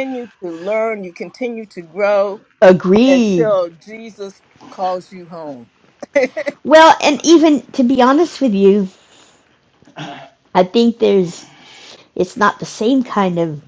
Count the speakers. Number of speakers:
two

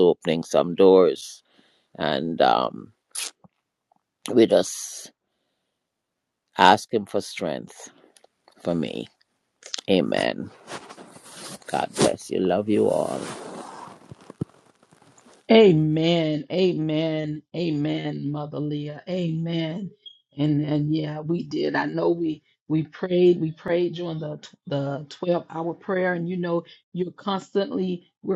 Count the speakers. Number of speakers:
two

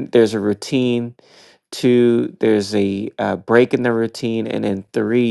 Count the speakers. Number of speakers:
one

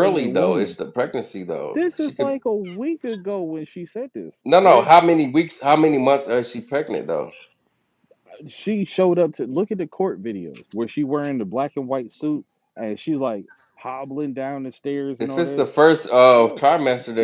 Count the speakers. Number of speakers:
two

